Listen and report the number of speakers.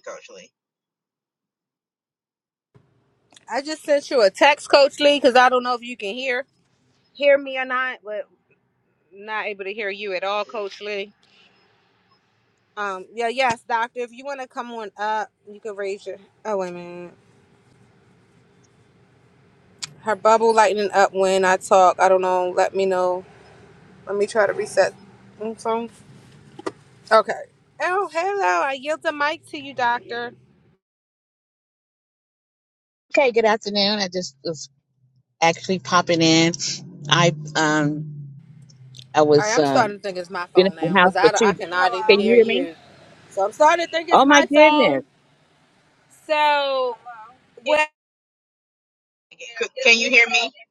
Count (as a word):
three